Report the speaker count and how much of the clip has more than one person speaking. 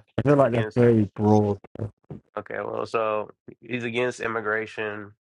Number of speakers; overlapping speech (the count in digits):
2, about 8%